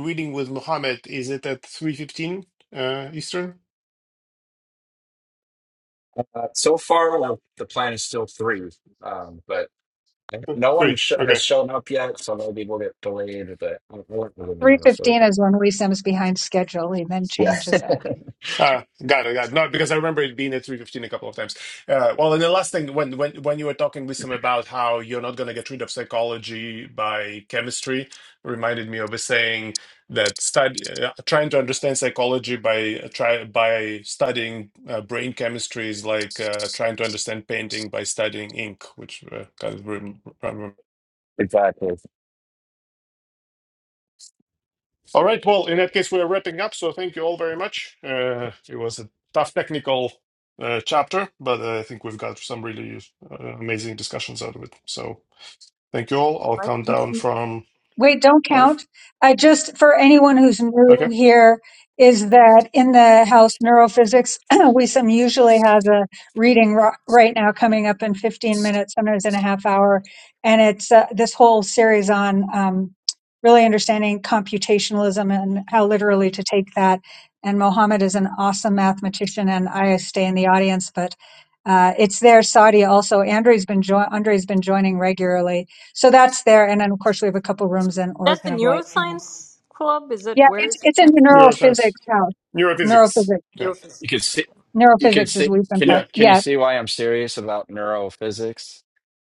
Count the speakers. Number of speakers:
4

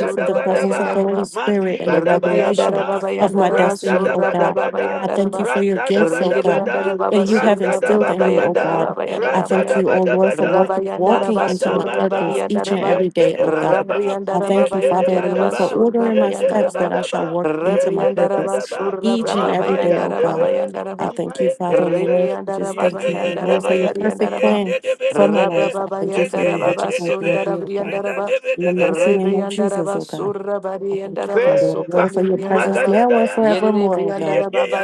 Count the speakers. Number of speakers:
3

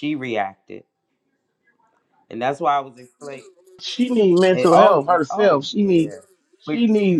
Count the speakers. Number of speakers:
2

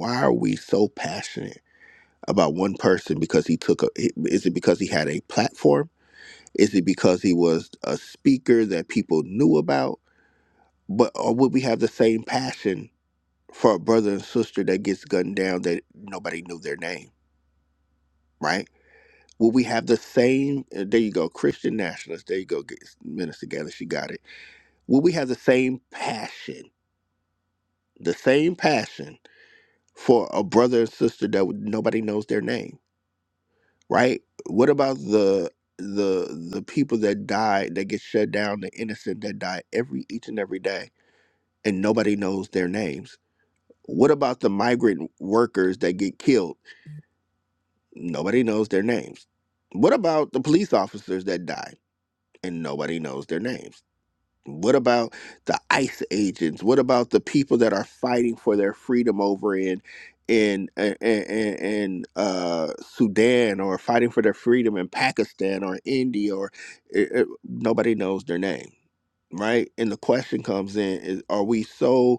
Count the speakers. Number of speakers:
1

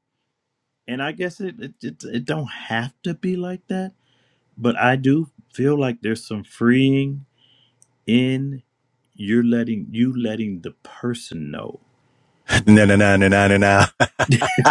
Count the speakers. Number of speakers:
2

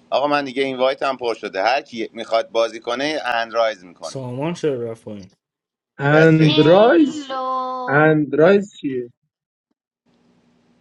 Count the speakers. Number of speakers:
4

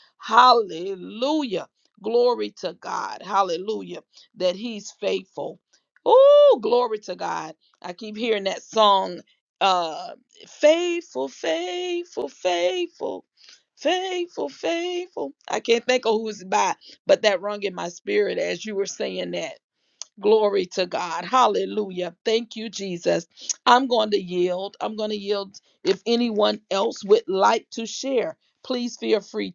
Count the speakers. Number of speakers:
1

